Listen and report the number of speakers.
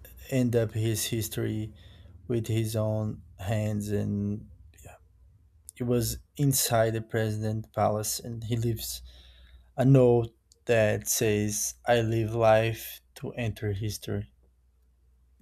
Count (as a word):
one